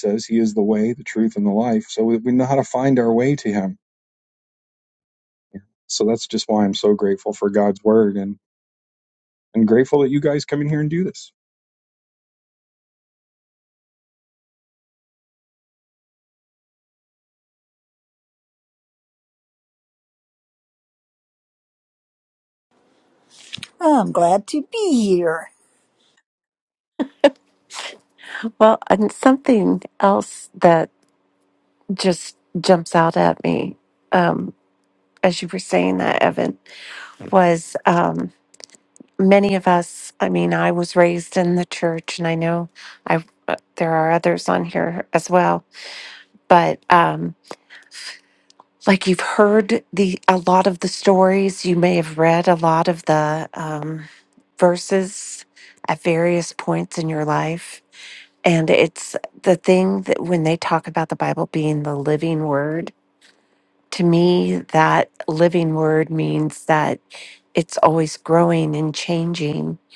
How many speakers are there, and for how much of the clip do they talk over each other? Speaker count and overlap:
three, no overlap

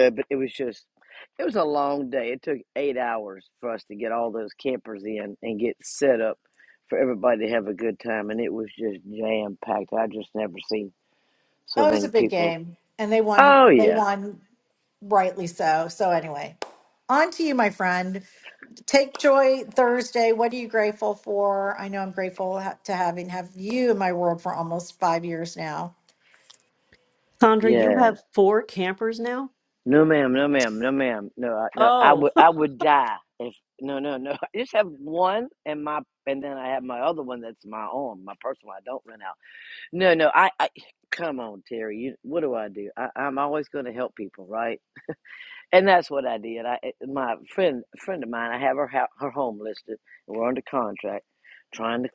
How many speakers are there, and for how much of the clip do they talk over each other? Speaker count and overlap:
three, about 5%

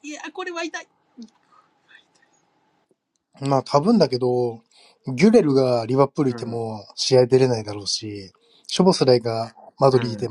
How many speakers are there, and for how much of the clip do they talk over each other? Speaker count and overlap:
two, about 6%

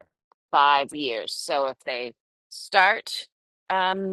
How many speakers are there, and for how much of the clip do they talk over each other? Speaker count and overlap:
one, no overlap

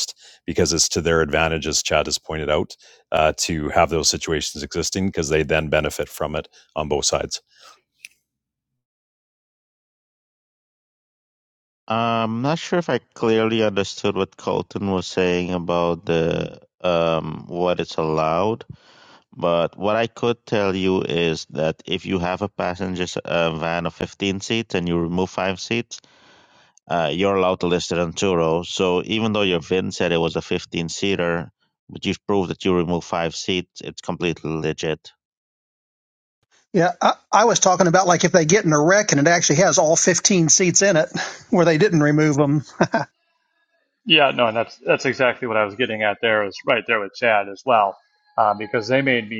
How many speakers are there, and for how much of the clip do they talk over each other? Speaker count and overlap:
four, no overlap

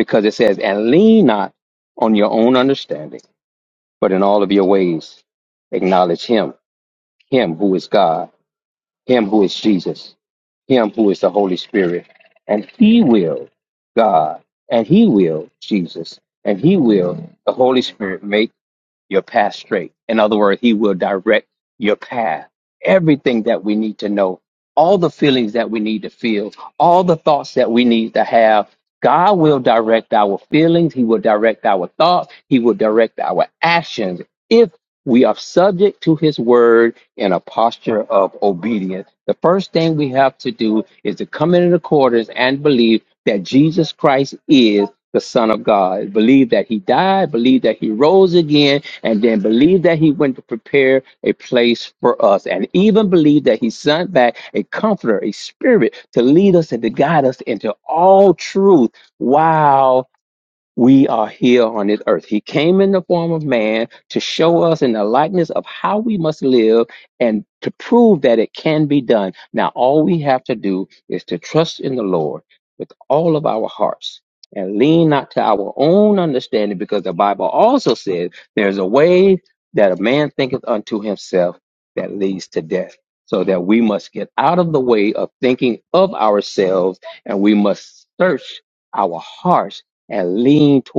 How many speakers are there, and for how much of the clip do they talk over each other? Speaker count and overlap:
one, no overlap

